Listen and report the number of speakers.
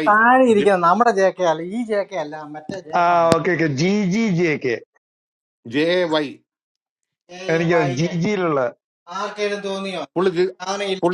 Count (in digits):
3